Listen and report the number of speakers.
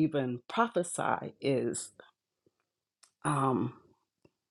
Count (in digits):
1